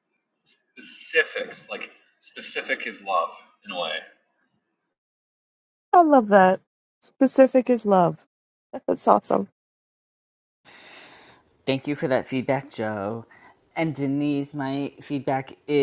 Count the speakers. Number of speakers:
three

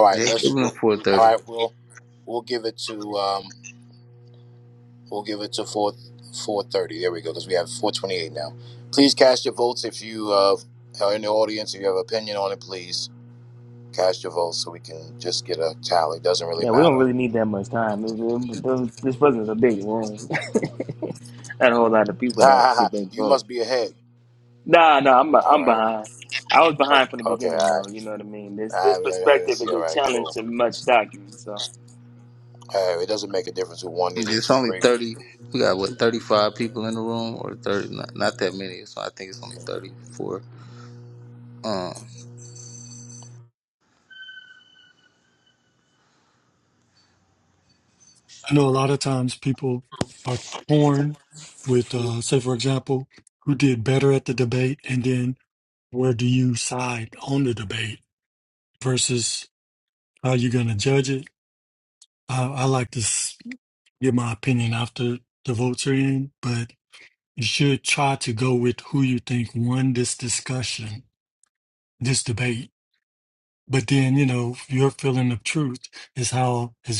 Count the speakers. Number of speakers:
four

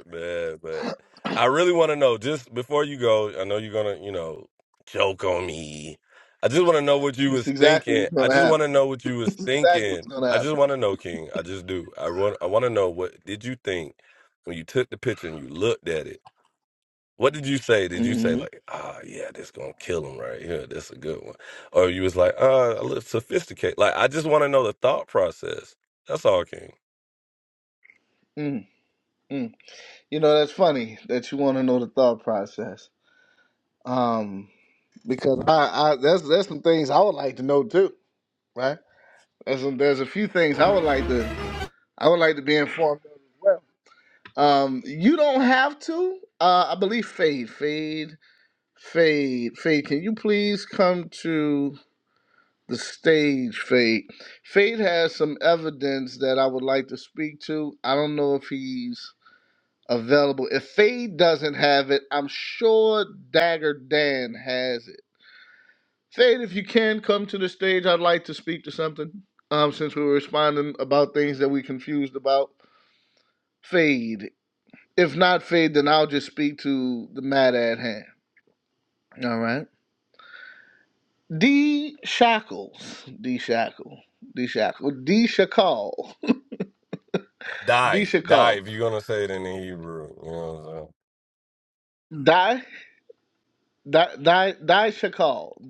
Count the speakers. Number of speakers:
two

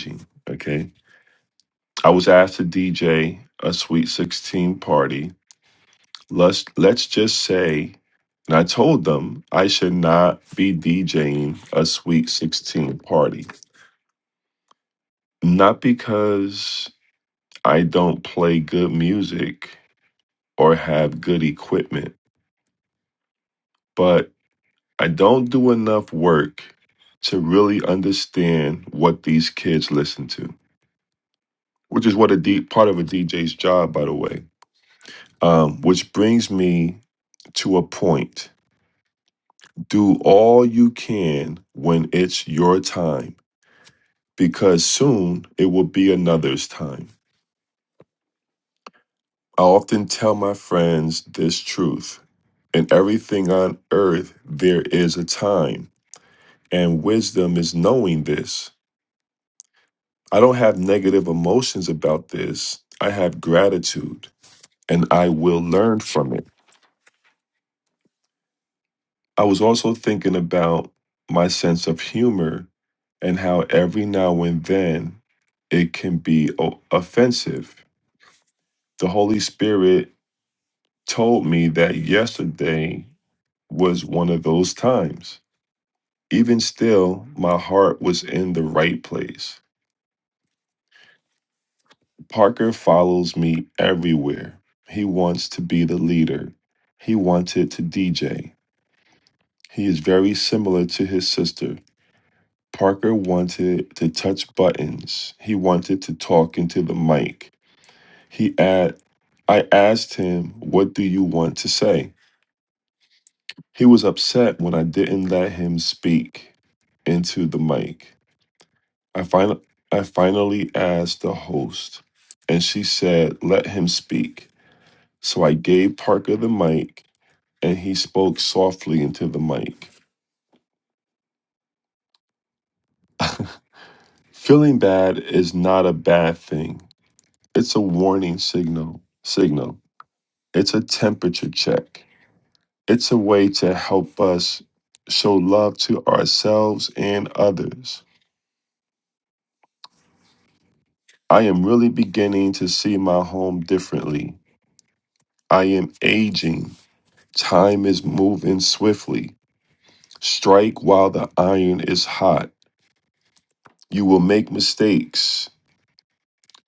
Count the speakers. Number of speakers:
one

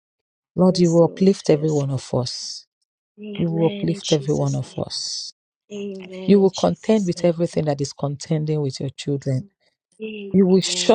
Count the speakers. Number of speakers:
two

